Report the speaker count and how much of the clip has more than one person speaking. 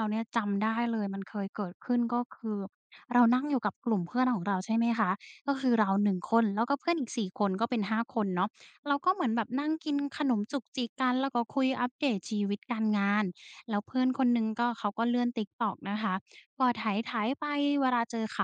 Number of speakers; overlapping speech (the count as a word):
one, no overlap